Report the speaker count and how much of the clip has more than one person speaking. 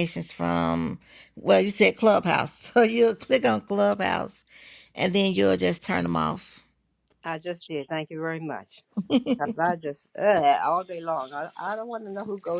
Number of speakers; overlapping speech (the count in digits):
2, no overlap